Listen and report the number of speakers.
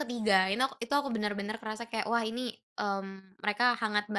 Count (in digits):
1